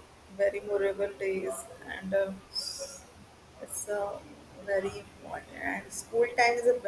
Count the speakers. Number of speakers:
1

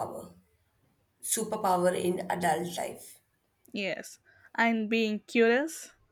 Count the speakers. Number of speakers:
2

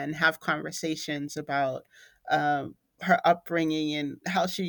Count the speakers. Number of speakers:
1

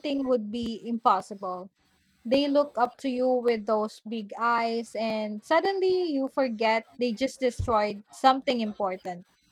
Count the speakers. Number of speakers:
1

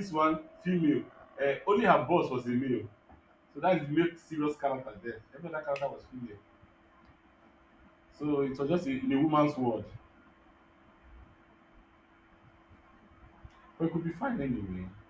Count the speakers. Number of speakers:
1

